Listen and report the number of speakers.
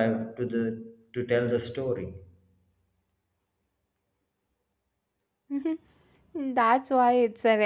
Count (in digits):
2